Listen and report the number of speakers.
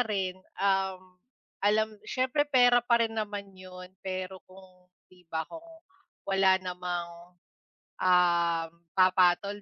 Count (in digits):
1